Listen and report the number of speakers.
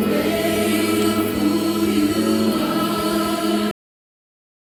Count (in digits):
0